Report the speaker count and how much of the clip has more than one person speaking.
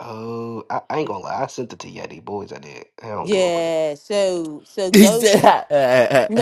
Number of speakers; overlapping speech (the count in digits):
3, about 13%